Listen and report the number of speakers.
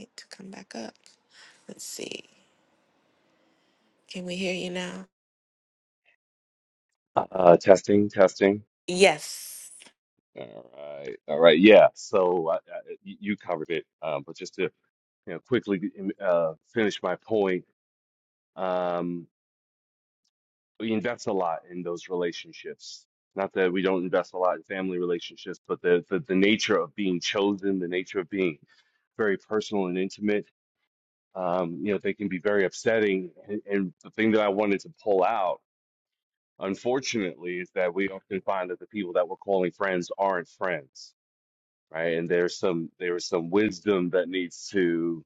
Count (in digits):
2